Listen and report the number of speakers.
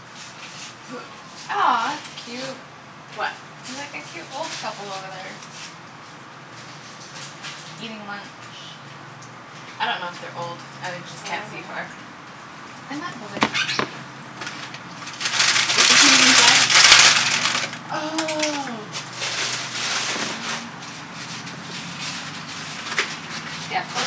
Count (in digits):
2